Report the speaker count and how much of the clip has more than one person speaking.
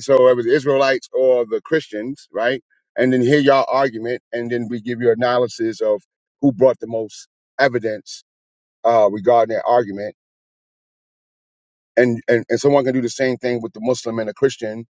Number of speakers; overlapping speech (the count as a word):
one, no overlap